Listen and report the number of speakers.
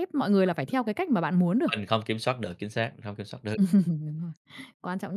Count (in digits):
2